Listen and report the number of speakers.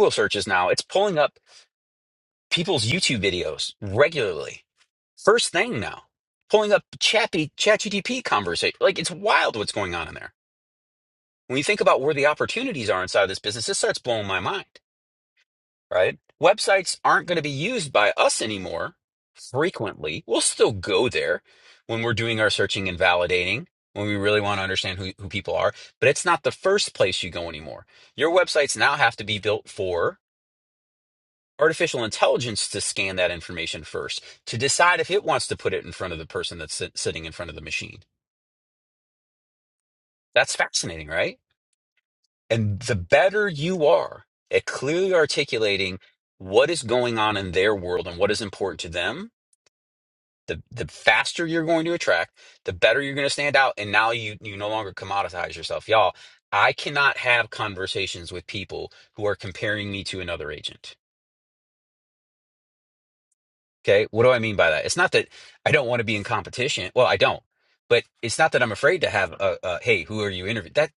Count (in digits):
1